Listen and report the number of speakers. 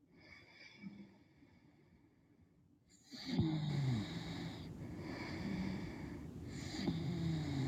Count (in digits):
0